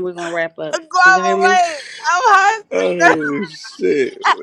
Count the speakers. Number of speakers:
3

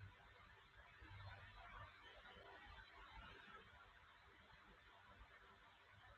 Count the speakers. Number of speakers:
0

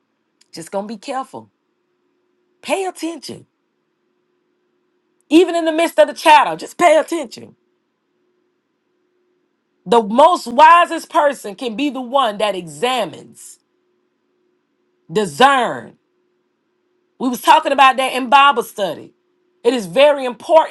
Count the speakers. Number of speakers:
1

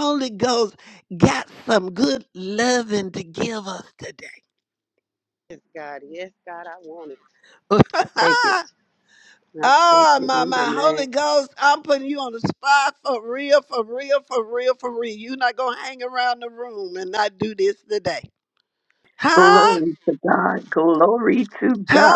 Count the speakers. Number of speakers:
3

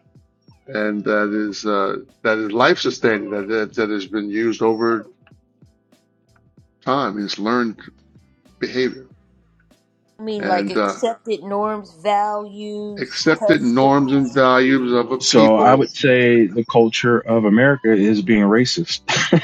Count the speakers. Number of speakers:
3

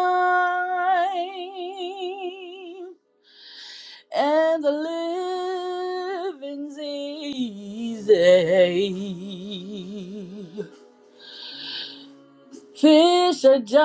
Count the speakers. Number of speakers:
1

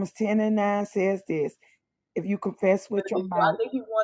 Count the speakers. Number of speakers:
2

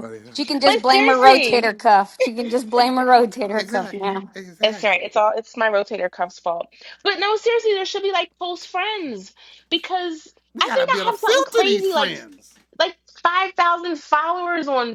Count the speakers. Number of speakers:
3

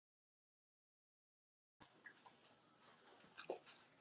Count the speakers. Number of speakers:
0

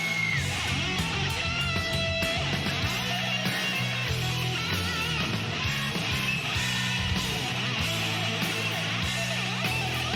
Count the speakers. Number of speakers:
0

